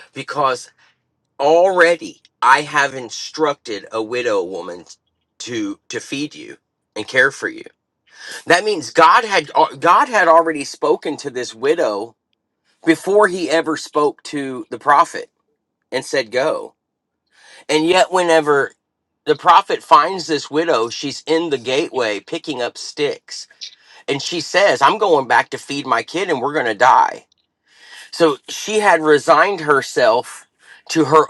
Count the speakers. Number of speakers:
1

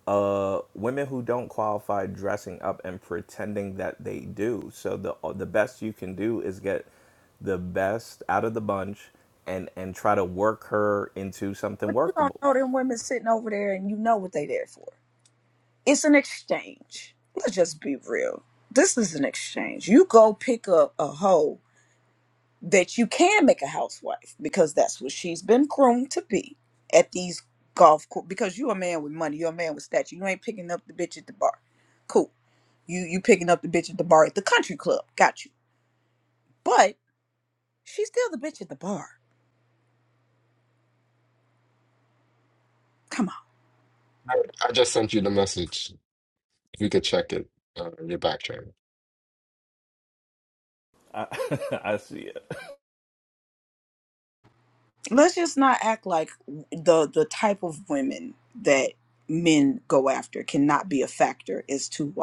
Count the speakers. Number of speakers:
3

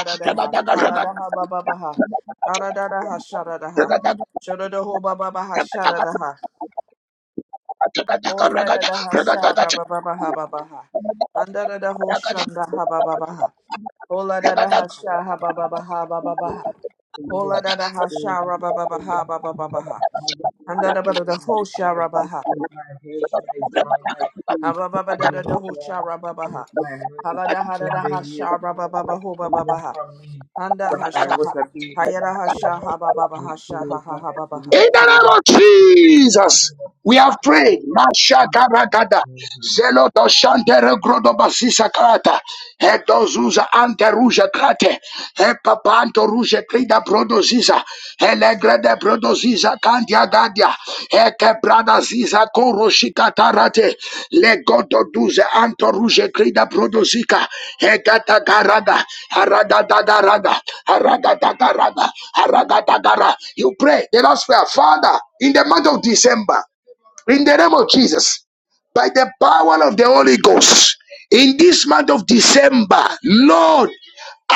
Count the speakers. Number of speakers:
3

